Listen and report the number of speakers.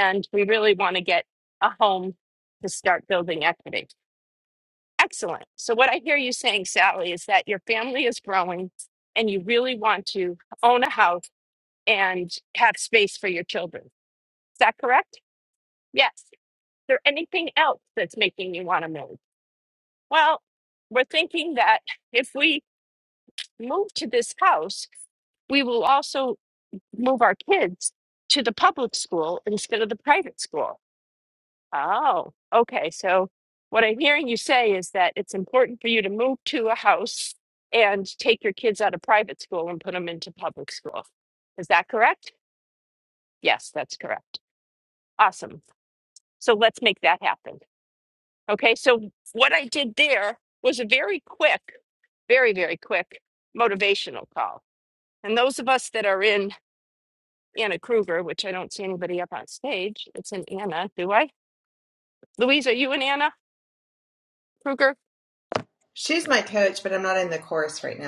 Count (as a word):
two